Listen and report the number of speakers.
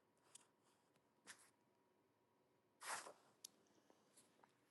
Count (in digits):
0